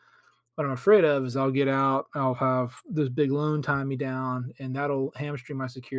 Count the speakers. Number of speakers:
1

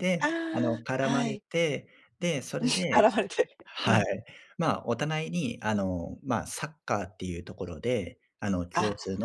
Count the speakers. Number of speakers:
2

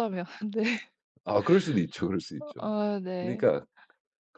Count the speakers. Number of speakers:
2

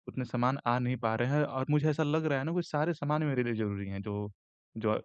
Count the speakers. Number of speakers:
1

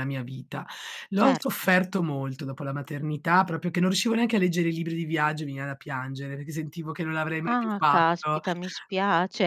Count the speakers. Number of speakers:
2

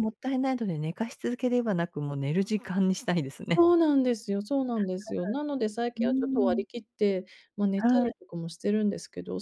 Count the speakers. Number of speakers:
2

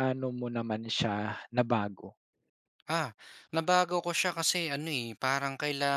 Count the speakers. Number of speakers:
2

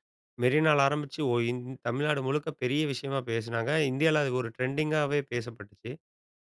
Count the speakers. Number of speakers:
1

